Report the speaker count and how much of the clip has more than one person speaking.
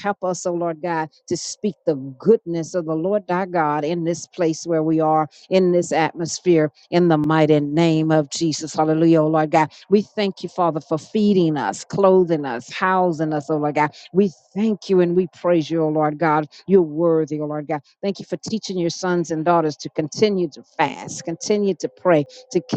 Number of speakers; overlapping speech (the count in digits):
1, no overlap